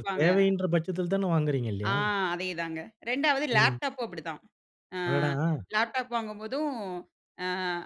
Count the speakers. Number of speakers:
2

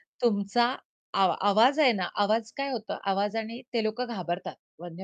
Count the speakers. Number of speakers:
1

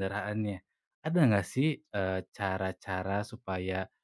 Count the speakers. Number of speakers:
1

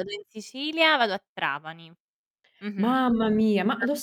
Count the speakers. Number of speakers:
2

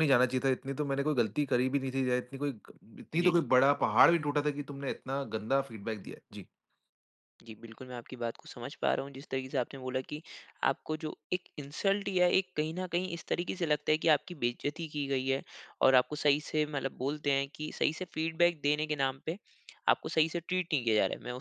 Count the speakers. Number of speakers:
2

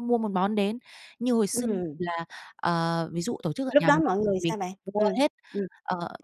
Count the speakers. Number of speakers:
2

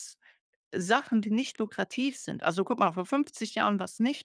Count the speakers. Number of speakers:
1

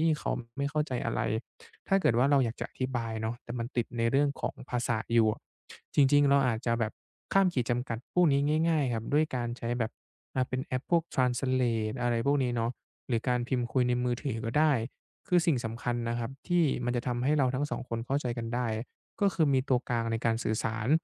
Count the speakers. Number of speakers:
1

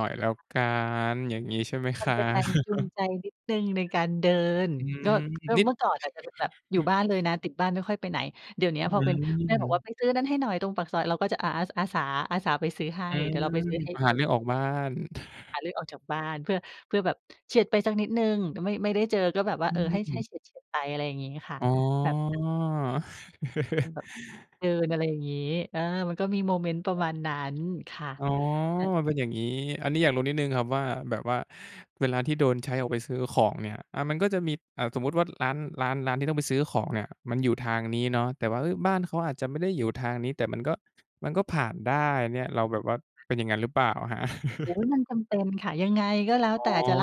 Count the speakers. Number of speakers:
2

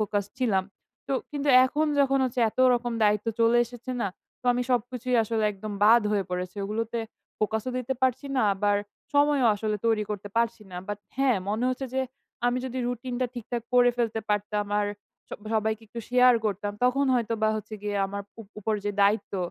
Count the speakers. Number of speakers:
1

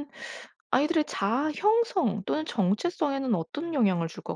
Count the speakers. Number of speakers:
1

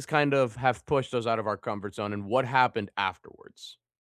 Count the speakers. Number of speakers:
1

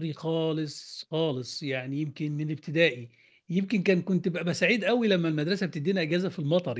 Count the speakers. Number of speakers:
1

